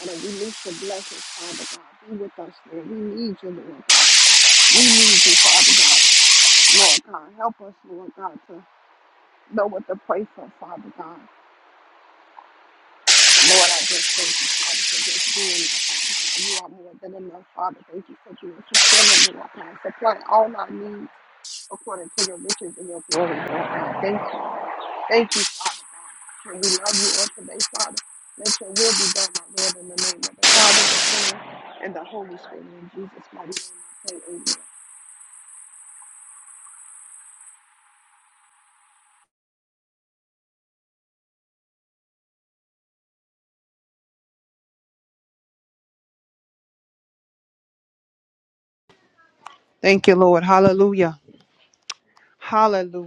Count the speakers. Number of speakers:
2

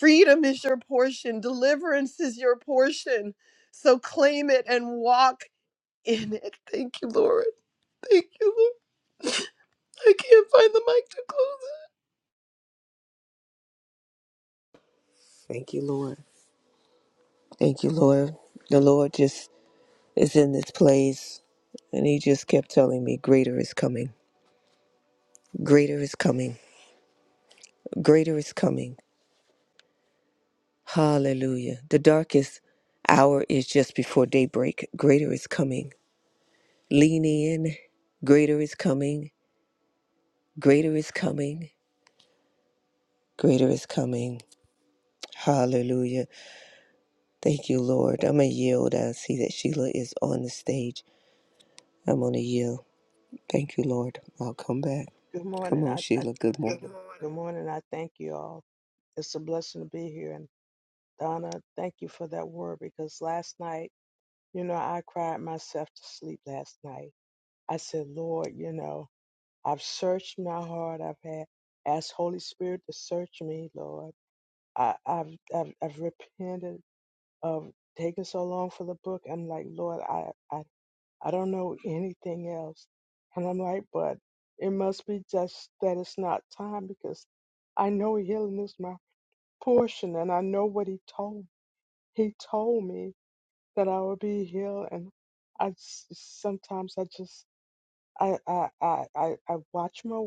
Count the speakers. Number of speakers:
3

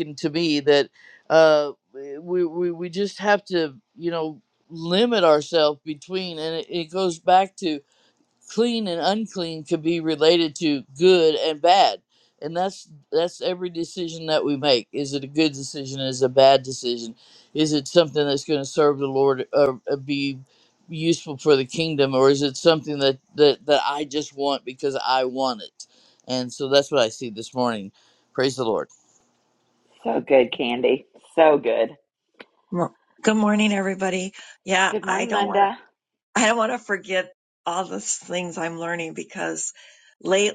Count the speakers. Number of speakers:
3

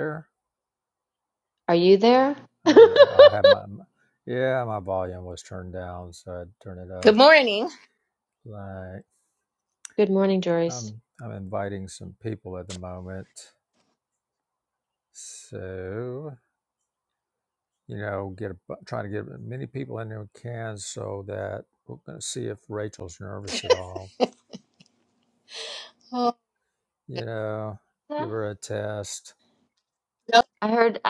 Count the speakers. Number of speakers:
3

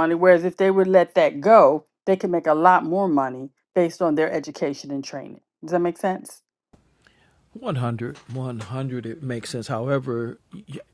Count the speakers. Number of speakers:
2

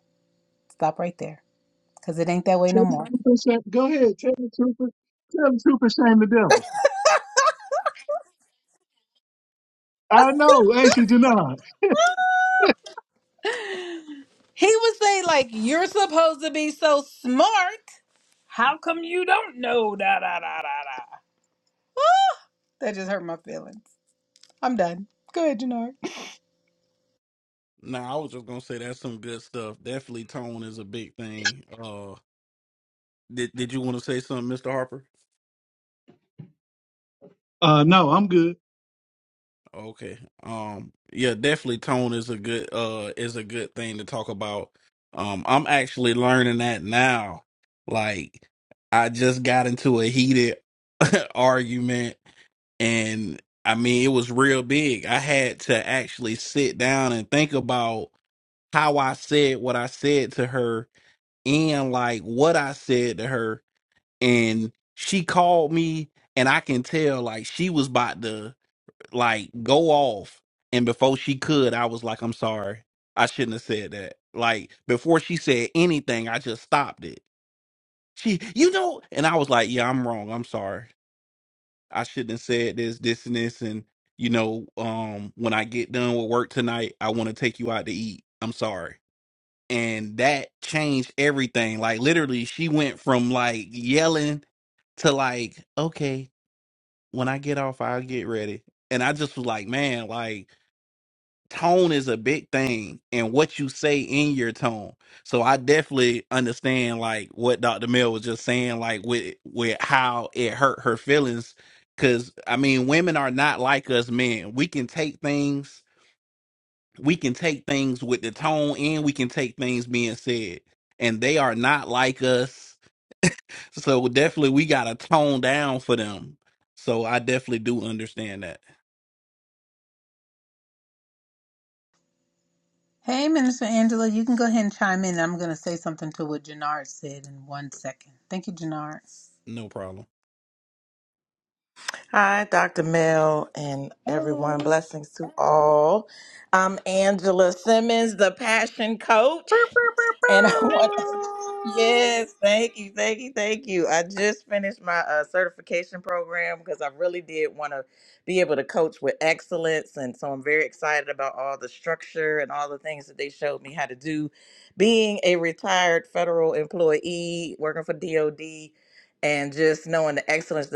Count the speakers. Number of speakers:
4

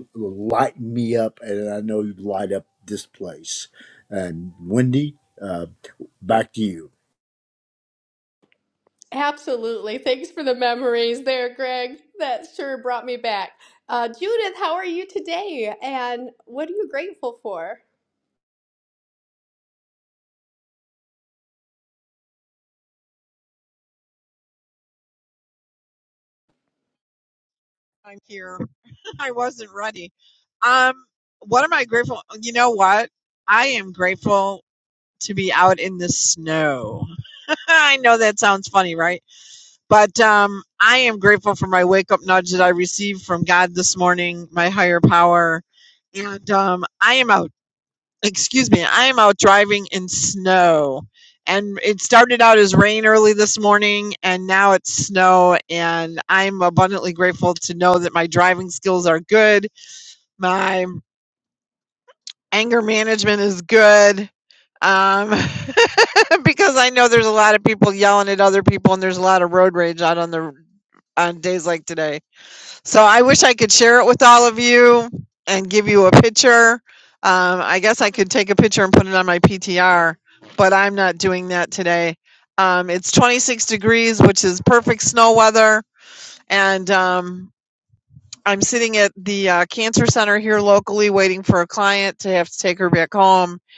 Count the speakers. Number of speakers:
3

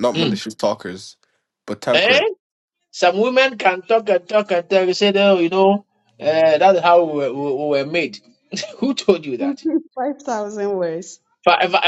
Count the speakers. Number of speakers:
3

